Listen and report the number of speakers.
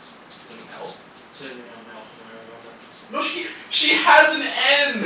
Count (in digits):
2